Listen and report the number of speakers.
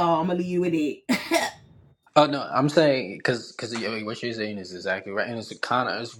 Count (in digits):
2